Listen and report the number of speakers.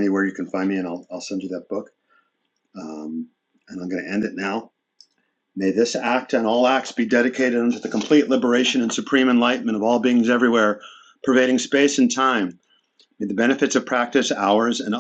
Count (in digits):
1